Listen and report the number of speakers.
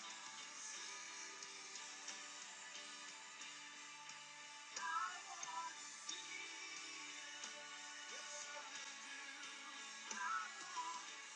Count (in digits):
0